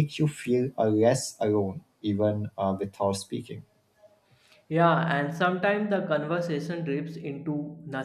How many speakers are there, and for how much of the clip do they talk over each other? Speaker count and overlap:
2, no overlap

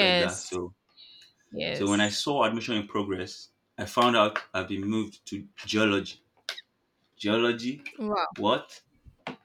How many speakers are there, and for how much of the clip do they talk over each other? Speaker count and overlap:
2, about 5%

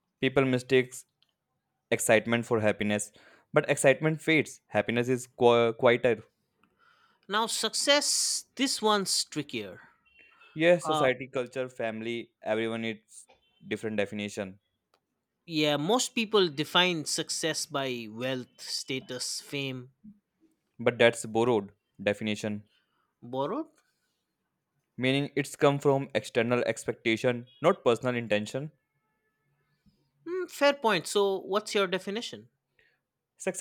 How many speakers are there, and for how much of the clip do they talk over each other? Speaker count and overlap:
2, about 1%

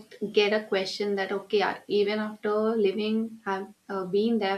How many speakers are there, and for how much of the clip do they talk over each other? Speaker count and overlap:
1, no overlap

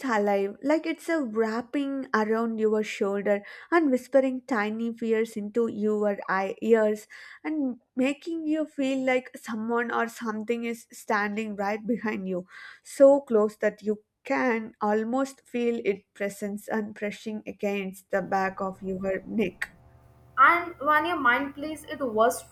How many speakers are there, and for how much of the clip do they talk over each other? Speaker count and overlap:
2, no overlap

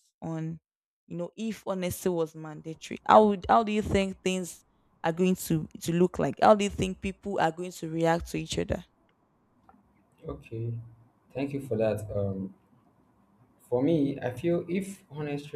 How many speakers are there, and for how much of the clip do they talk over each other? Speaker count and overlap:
2, no overlap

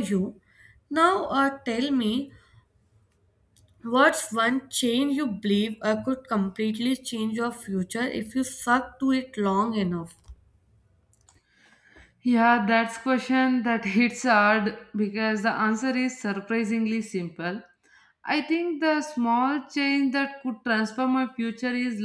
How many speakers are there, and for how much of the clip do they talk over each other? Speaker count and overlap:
2, no overlap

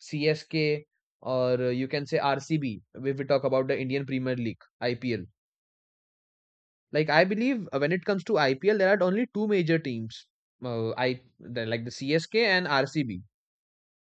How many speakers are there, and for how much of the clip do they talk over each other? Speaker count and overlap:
1, no overlap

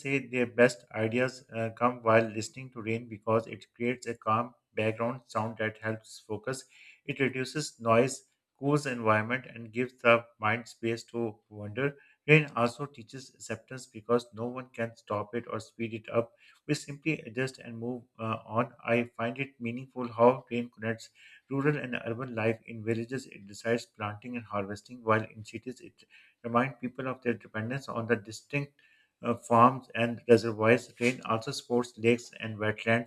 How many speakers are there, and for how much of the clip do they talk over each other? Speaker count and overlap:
1, no overlap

